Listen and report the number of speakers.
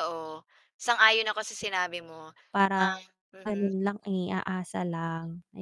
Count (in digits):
2